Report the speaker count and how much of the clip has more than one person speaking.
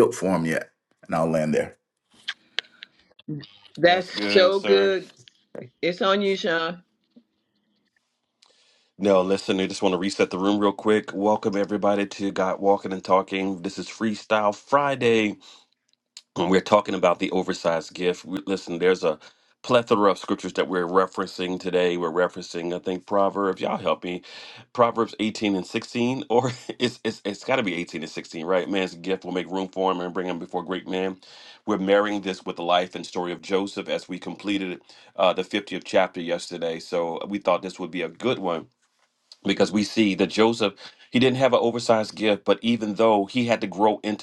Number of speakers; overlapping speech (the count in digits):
3, about 2%